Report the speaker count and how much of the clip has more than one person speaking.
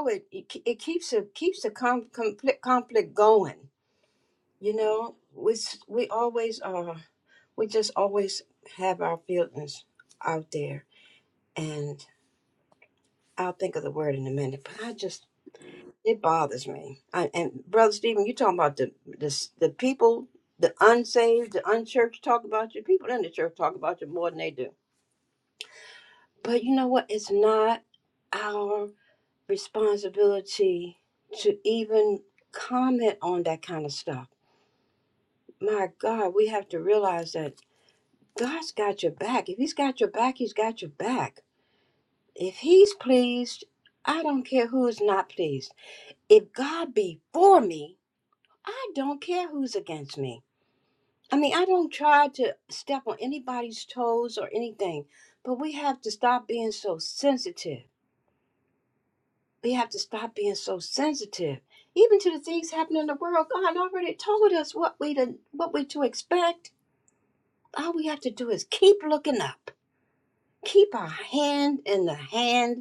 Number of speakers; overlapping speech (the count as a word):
one, no overlap